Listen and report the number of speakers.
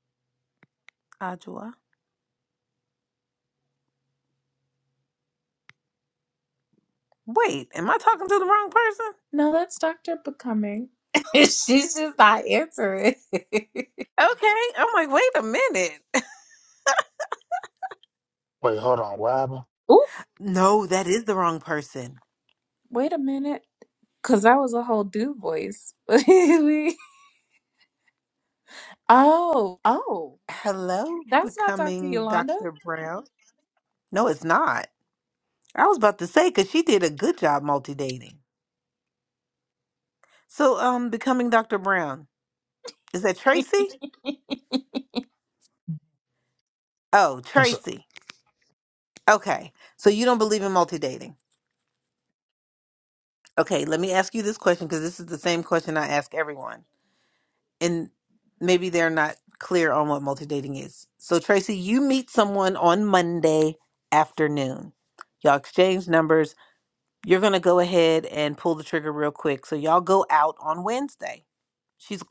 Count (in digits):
3